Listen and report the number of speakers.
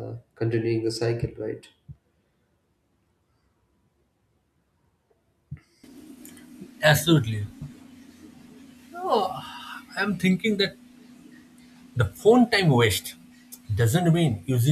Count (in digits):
2